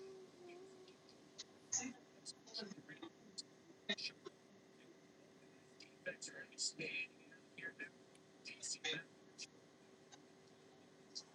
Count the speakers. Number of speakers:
zero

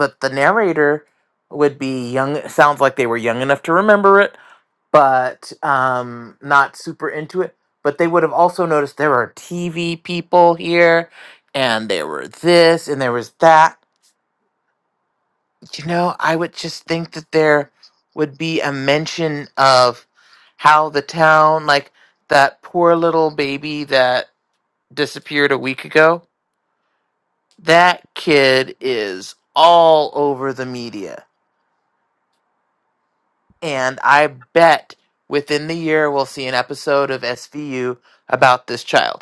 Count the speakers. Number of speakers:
one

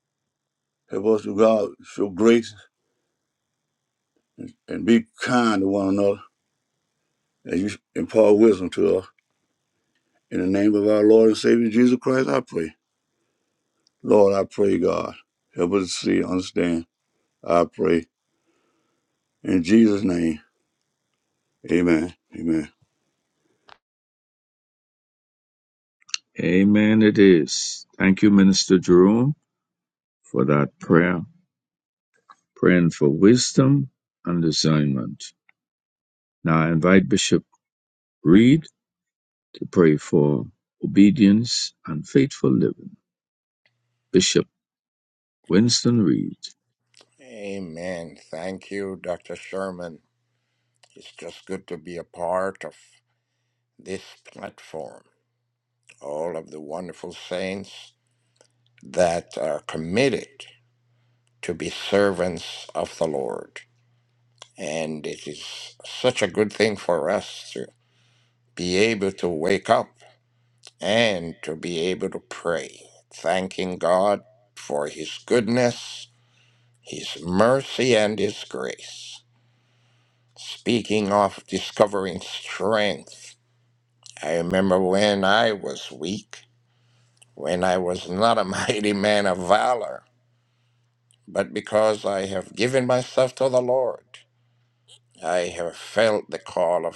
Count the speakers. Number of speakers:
three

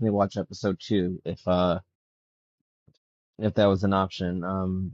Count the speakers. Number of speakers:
one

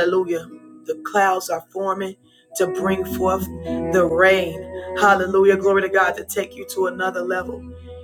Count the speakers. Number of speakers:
one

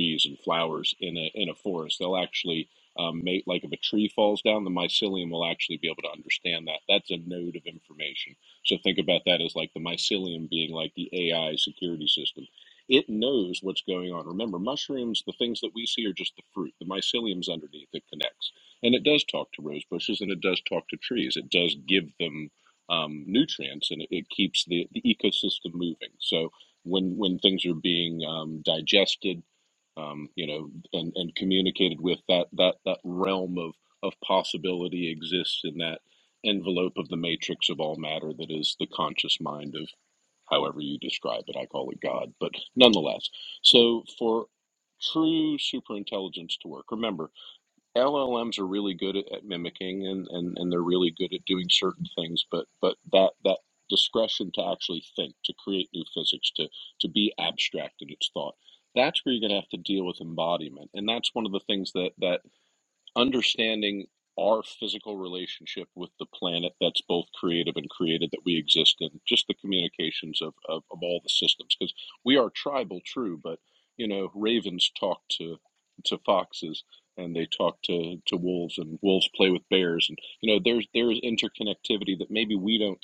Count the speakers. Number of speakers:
one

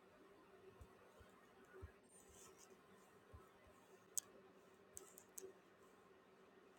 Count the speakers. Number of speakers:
zero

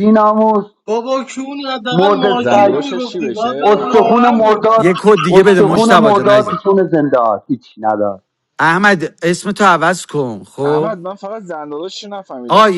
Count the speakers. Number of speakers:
four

